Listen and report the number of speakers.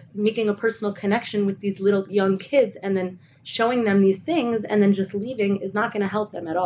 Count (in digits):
1